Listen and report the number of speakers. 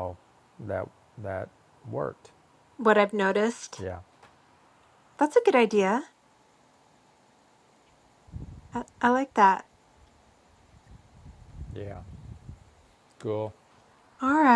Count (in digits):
2